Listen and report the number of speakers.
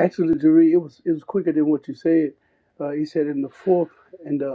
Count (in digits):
1